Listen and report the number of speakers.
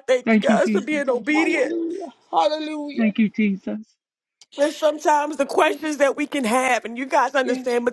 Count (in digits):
3